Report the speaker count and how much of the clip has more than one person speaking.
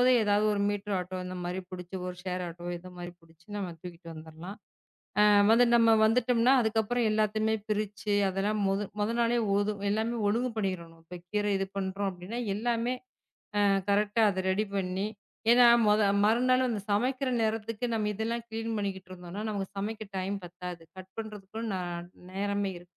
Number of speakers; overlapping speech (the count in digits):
1, no overlap